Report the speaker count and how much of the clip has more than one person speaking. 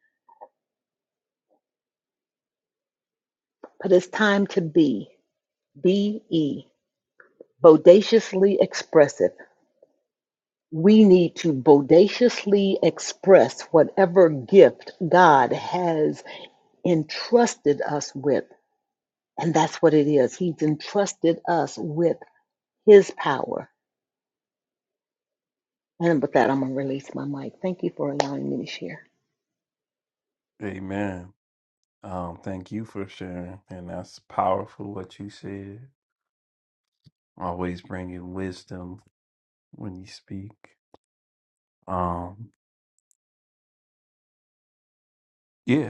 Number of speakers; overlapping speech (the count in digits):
2, no overlap